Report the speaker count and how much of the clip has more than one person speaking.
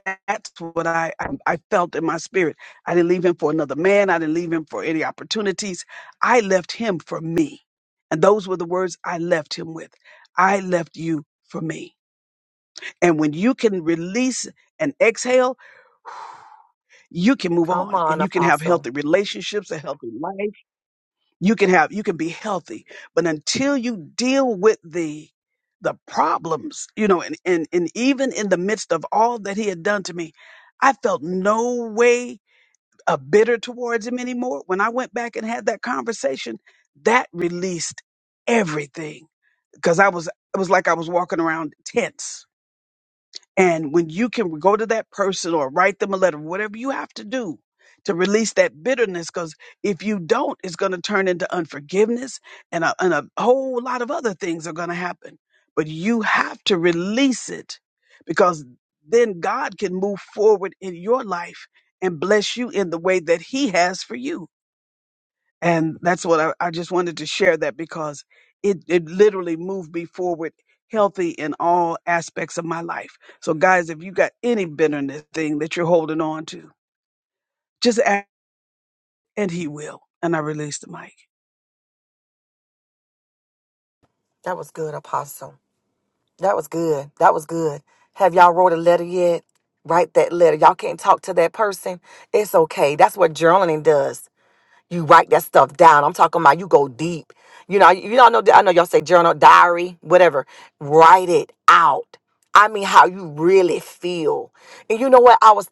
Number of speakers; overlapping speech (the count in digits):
2, about 1%